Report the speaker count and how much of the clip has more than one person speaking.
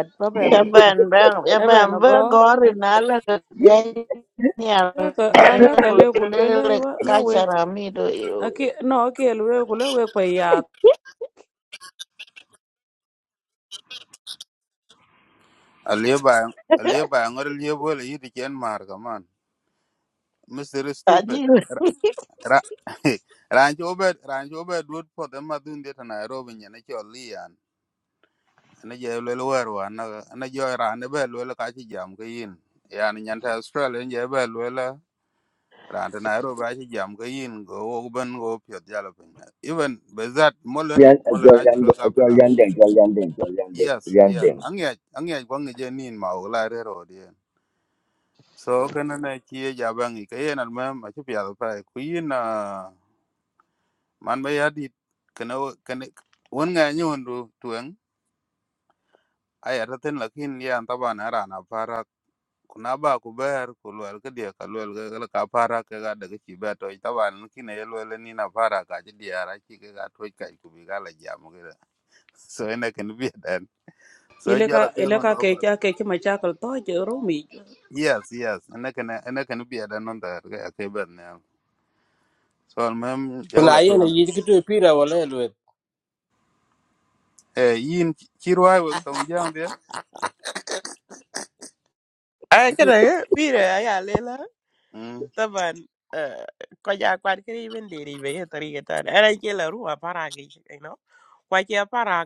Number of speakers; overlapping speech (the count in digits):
6, about 7%